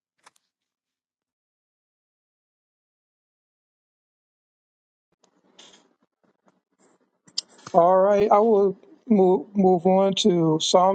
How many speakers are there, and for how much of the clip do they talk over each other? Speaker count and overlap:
one, no overlap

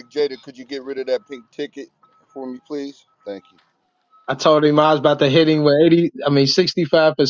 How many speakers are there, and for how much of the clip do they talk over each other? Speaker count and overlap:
two, no overlap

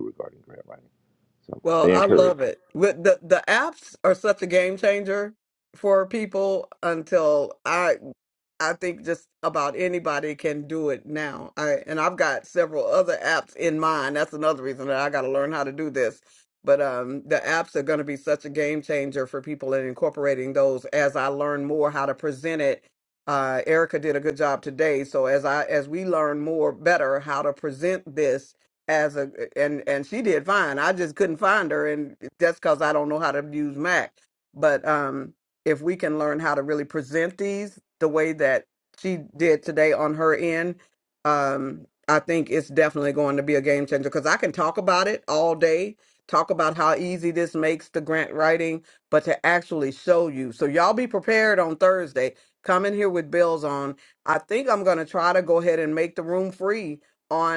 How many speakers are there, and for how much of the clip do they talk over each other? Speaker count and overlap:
two, about 1%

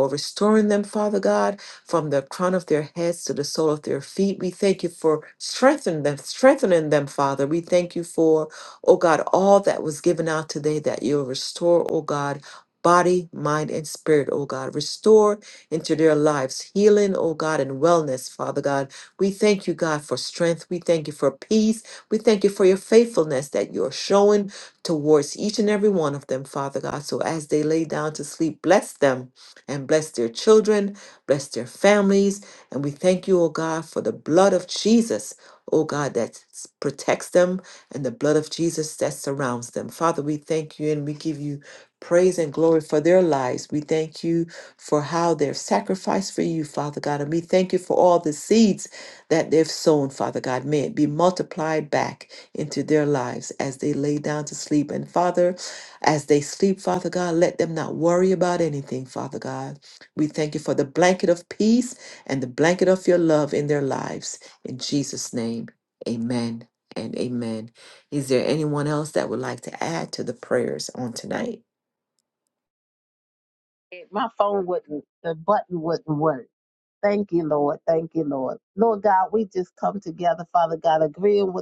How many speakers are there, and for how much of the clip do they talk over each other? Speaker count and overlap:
two, no overlap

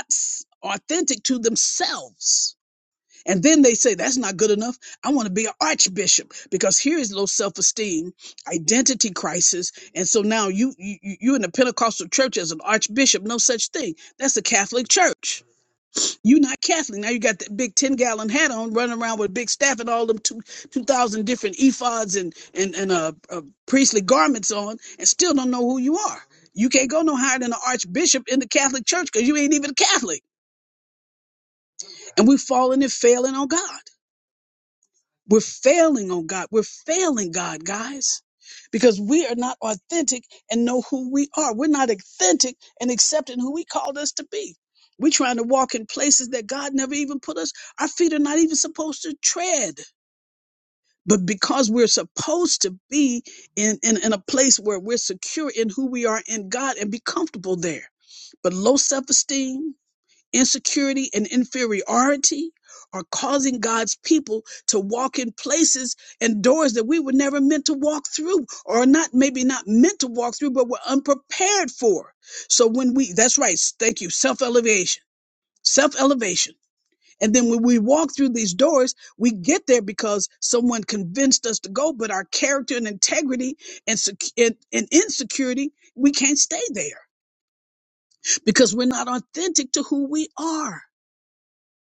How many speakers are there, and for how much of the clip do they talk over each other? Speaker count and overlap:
one, no overlap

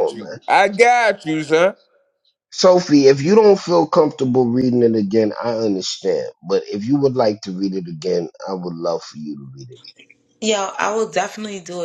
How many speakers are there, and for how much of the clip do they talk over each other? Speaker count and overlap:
three, about 3%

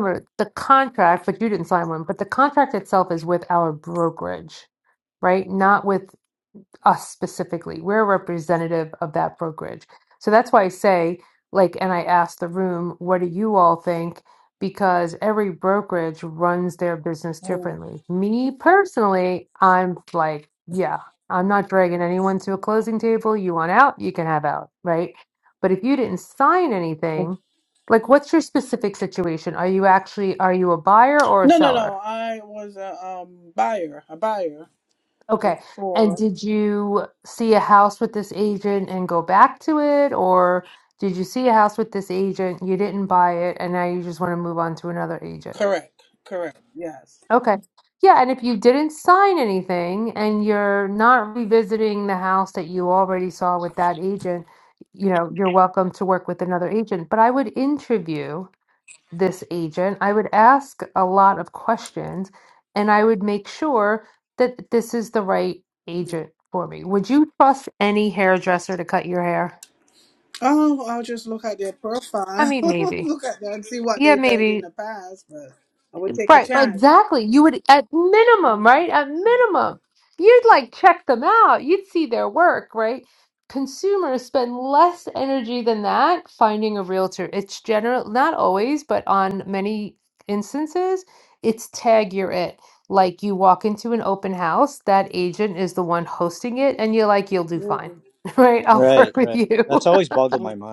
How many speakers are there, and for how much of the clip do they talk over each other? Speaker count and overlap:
three, about 5%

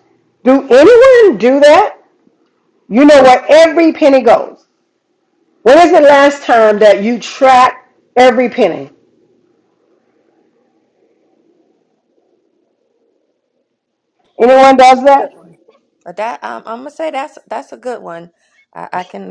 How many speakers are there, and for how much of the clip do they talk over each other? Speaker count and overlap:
two, about 2%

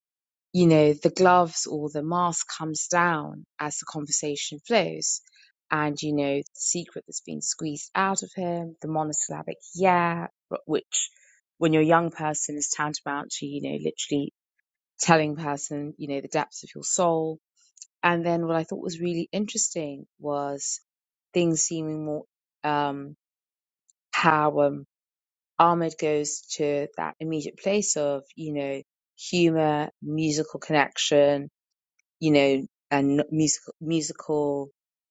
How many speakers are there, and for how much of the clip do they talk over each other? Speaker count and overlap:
one, no overlap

